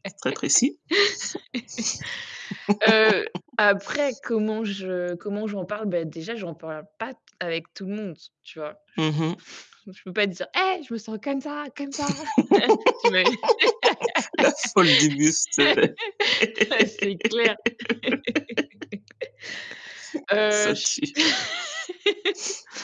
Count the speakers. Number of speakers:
2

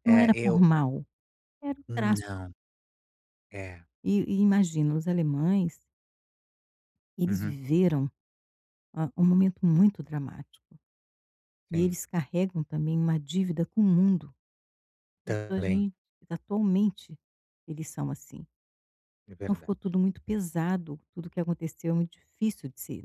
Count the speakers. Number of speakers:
2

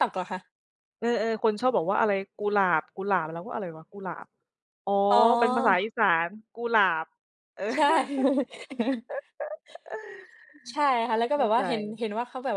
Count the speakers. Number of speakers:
2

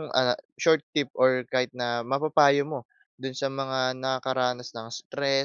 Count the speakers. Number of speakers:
1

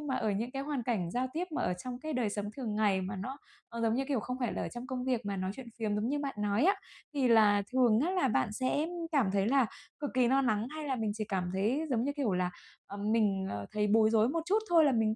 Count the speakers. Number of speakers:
1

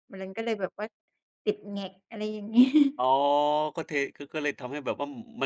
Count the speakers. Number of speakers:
2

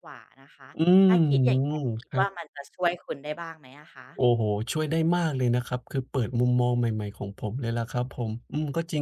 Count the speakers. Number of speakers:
2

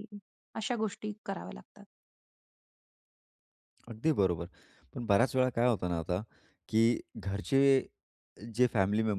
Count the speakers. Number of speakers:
2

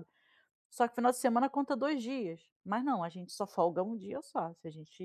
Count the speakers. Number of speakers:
1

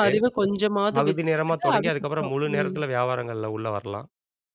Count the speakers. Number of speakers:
2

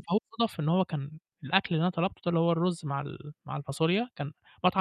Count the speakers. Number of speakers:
1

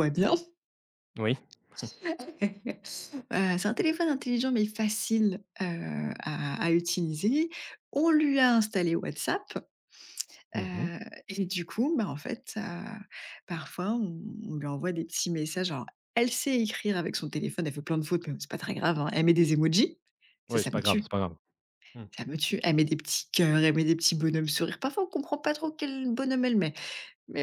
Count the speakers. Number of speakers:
2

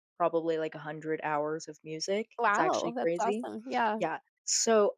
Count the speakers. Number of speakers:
2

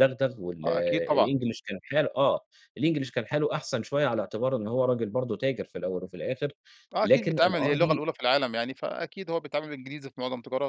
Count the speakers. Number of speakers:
2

